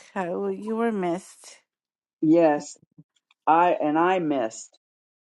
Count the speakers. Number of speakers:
2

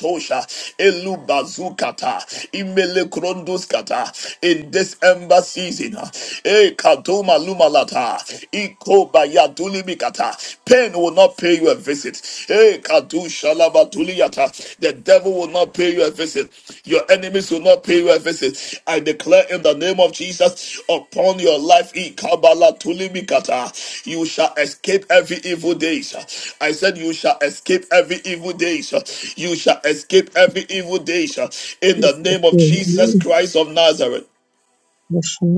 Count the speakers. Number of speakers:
2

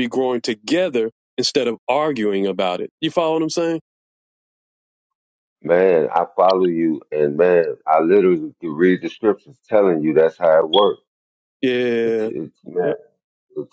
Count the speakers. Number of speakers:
2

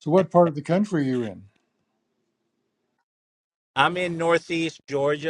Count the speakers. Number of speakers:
2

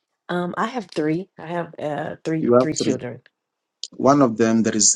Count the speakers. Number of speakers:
2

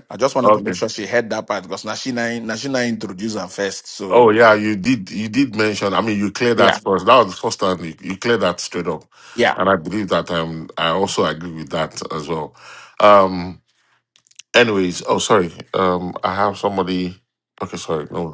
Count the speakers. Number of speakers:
2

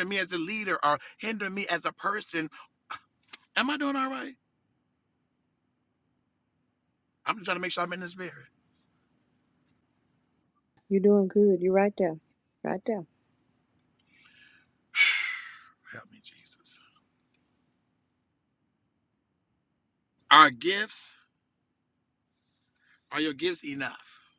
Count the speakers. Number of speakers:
2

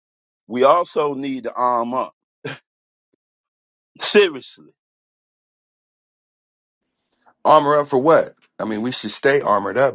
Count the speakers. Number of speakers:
2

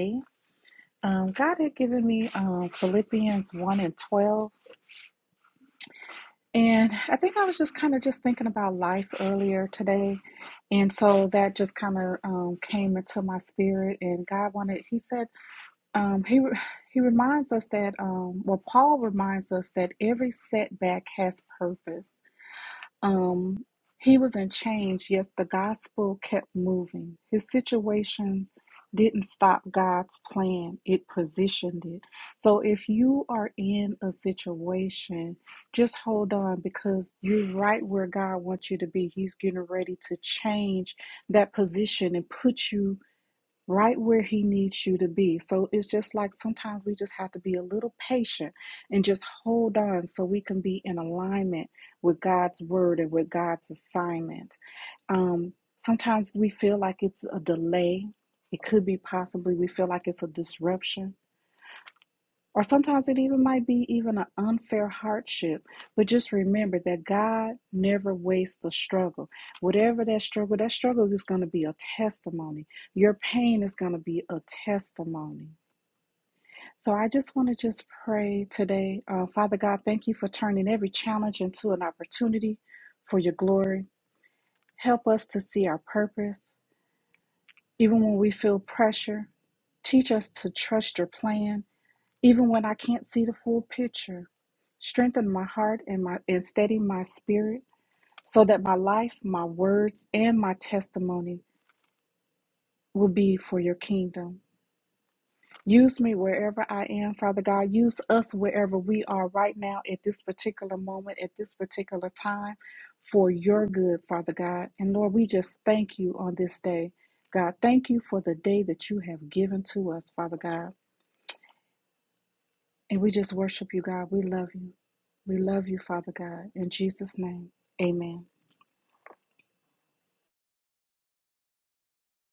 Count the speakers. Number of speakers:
1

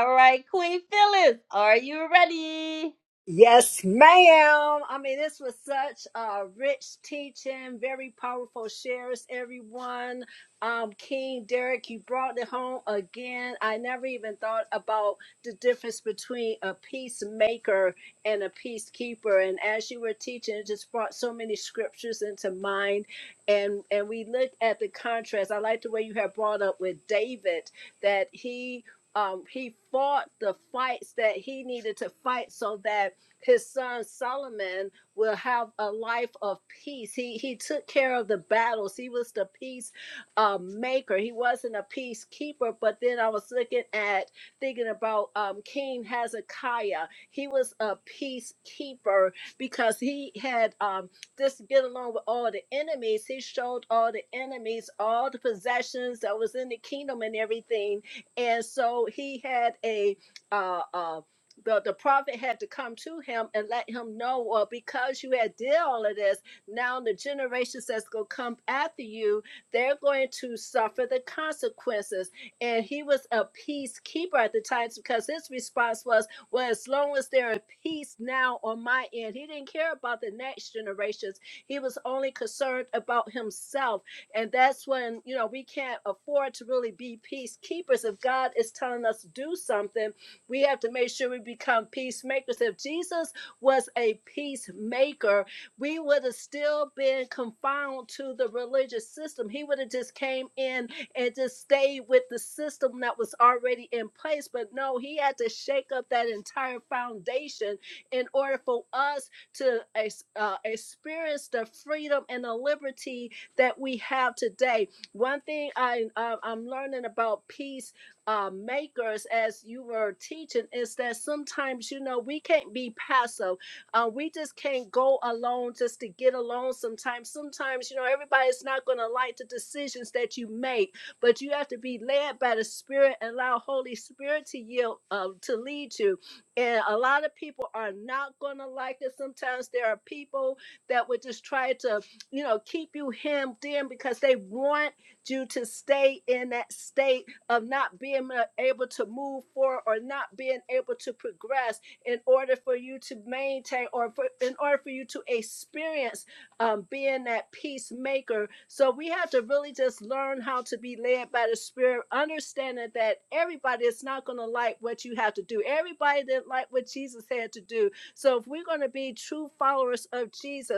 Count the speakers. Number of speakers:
2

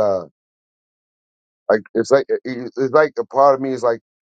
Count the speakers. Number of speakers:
1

